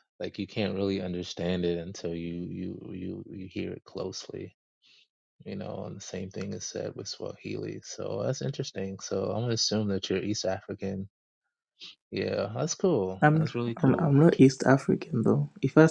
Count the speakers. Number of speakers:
2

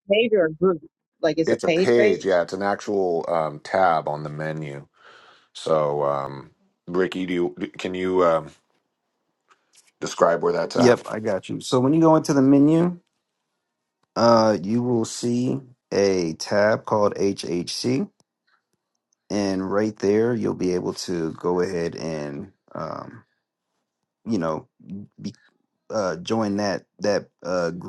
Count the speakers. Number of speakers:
3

